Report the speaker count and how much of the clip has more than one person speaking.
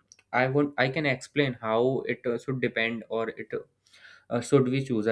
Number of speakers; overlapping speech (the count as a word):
one, no overlap